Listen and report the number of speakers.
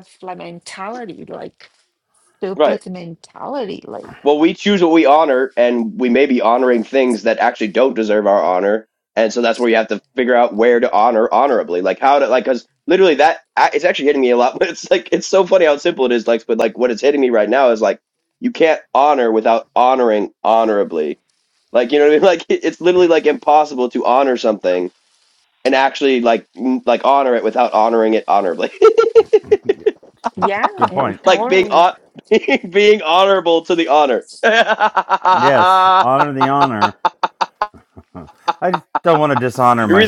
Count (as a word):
three